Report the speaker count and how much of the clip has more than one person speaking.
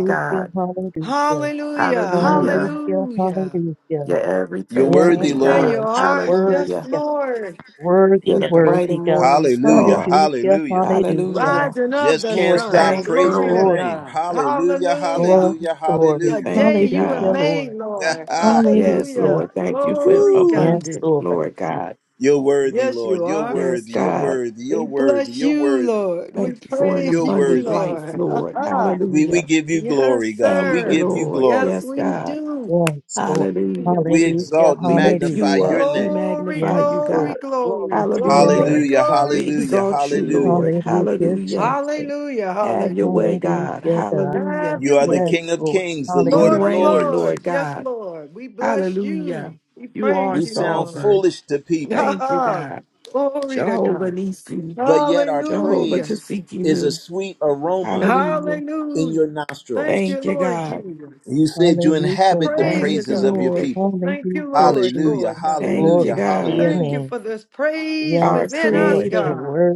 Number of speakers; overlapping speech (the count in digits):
4, about 74%